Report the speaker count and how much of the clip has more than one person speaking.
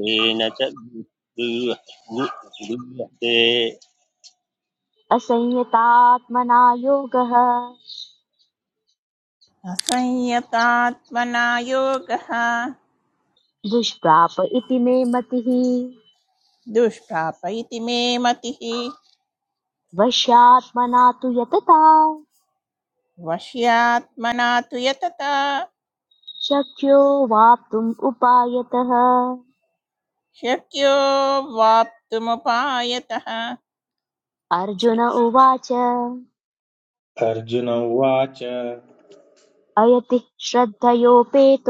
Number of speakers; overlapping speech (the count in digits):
4, no overlap